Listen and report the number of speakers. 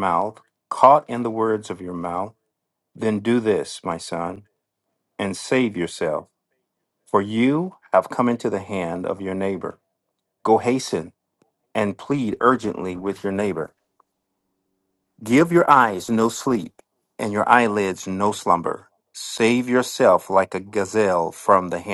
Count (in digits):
1